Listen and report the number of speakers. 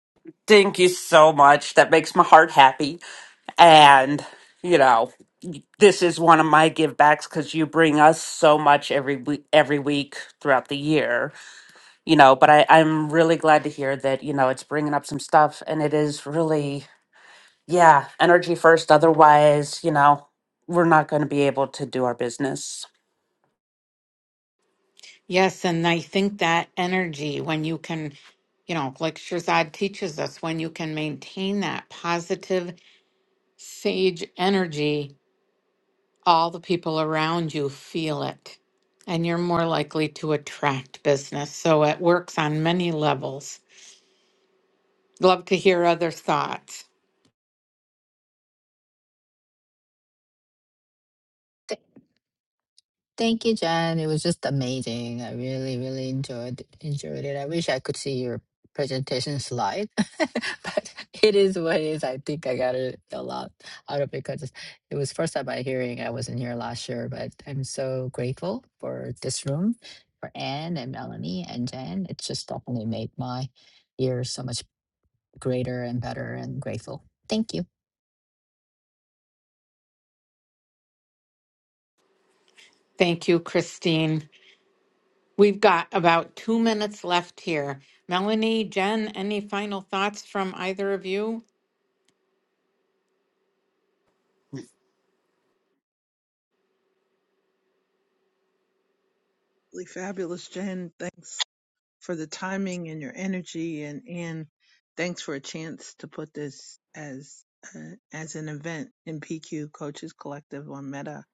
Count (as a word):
four